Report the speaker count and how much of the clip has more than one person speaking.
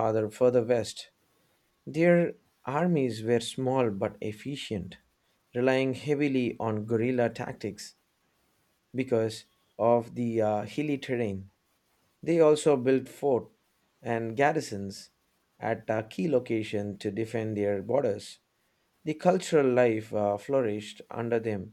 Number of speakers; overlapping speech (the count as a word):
one, no overlap